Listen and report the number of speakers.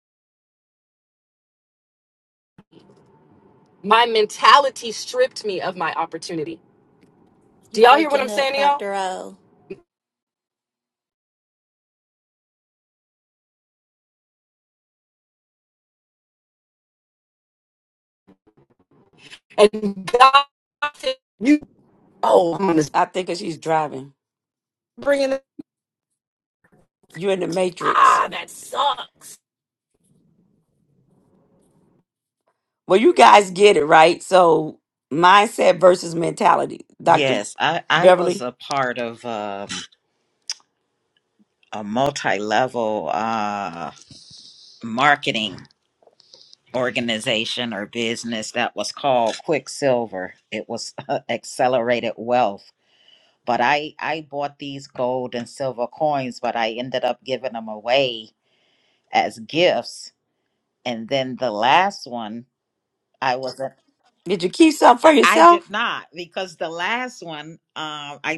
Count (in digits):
4